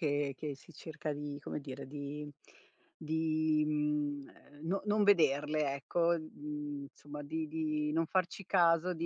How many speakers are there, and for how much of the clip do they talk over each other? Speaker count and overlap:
one, no overlap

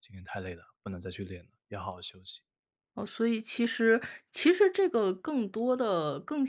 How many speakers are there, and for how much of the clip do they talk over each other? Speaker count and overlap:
two, no overlap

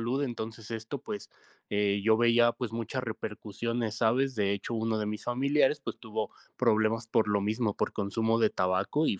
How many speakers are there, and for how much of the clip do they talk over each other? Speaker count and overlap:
one, no overlap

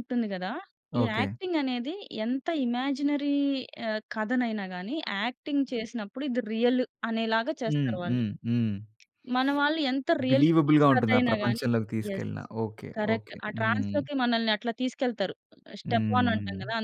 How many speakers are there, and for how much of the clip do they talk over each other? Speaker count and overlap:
two, about 25%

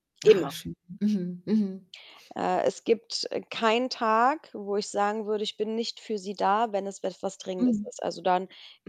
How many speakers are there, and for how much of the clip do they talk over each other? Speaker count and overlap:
two, about 6%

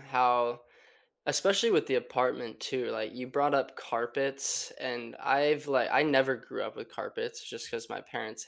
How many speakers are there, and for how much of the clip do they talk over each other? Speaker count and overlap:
one, no overlap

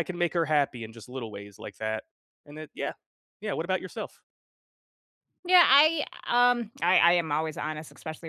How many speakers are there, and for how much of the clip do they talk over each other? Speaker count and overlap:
two, no overlap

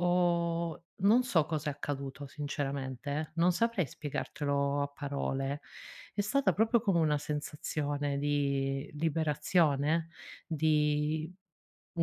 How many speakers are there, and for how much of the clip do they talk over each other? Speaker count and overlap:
one, no overlap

